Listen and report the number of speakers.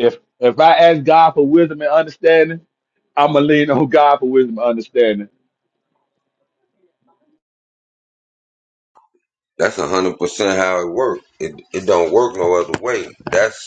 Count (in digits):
2